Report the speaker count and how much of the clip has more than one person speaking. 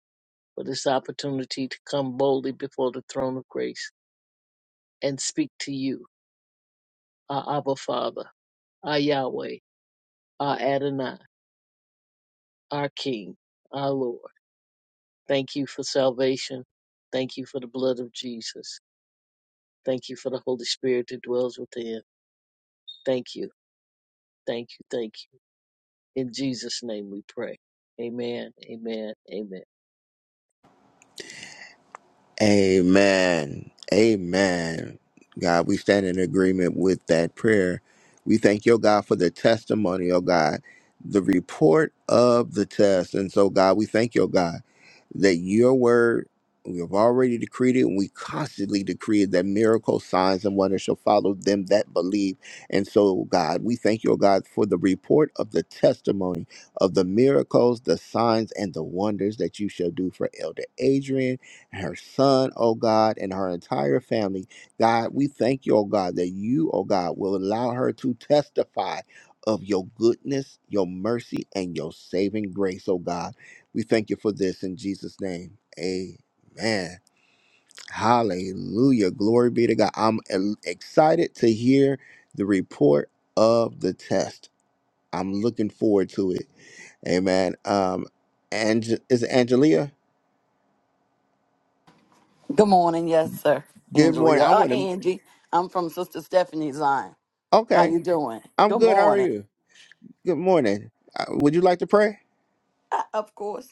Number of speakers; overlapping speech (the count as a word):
three, about 2%